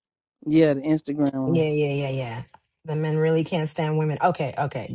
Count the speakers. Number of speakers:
two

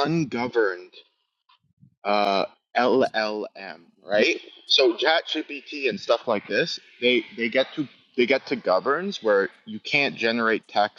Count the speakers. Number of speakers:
one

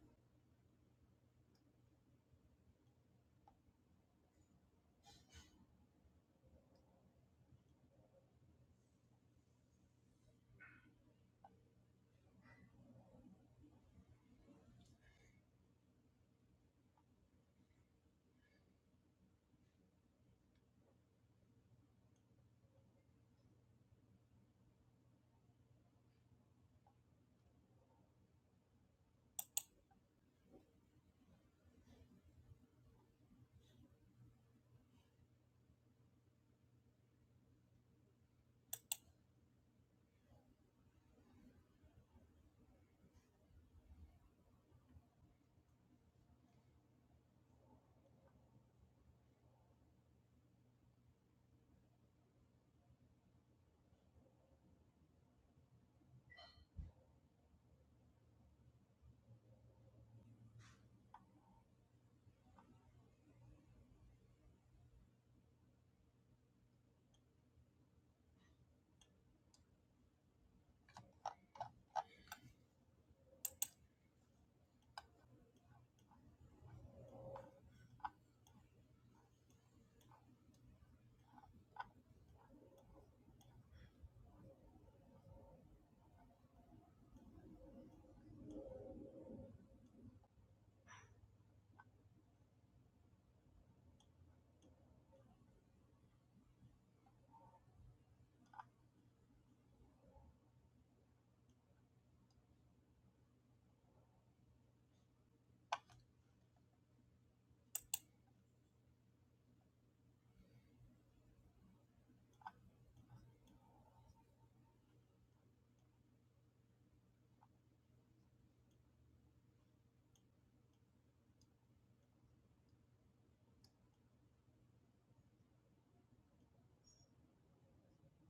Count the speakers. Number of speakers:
zero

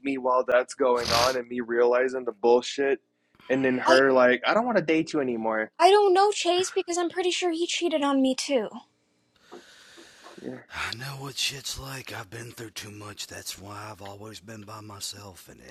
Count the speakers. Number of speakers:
three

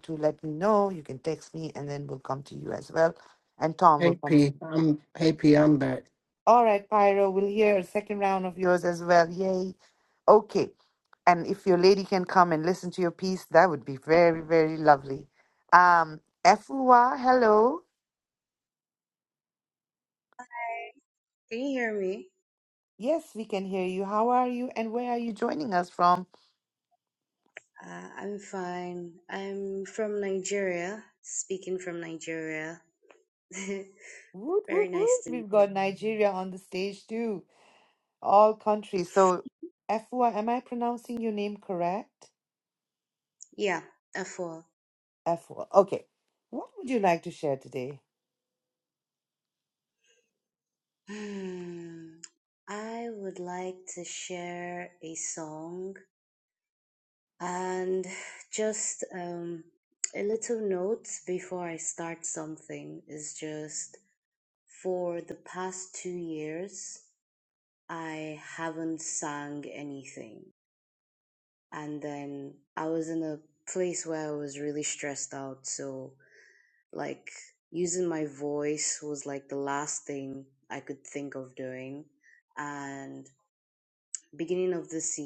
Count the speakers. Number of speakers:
three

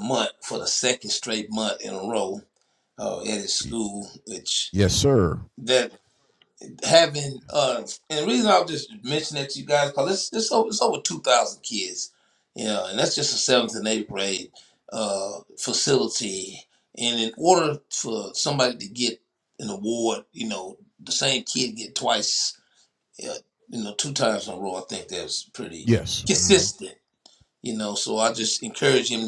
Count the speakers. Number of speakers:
two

